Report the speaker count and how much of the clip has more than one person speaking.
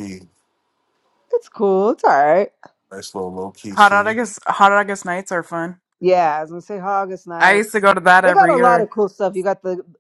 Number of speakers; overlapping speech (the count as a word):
three, about 12%